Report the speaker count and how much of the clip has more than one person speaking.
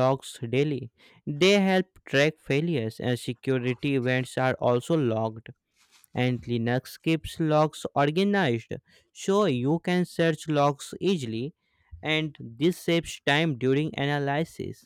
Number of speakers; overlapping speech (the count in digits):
1, no overlap